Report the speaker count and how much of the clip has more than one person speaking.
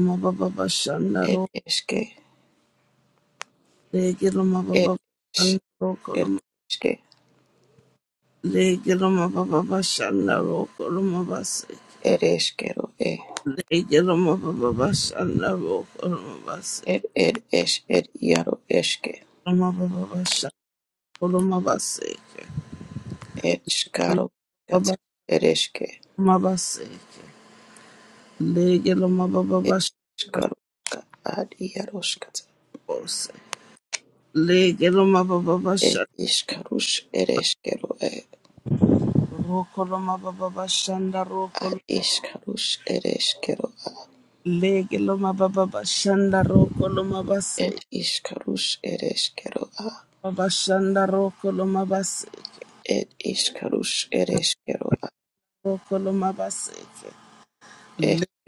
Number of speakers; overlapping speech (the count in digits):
2, about 3%